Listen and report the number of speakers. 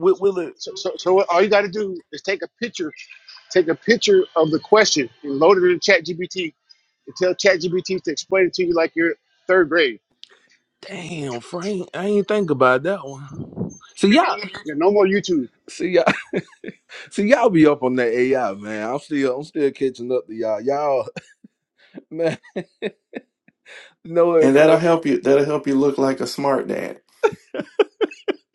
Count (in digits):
3